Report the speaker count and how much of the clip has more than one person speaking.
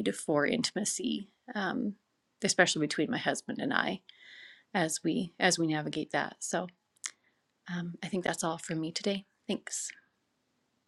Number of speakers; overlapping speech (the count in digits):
1, no overlap